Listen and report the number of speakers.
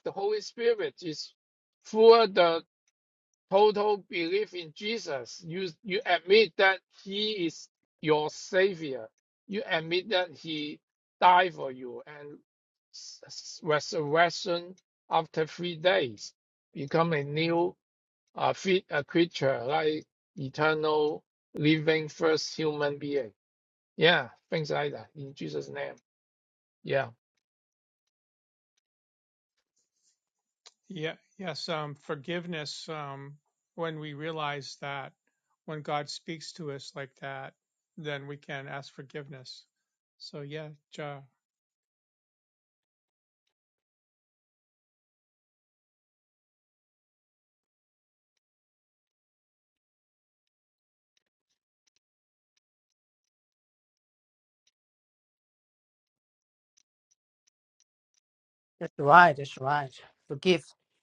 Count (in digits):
3